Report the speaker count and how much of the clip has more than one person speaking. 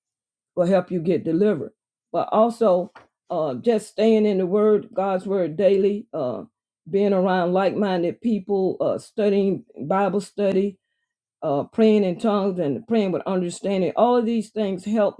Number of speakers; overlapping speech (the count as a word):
one, no overlap